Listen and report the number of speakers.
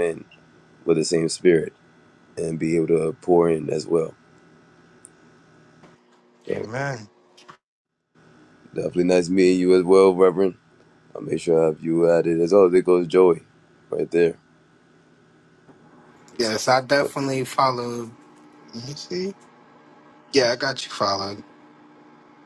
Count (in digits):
2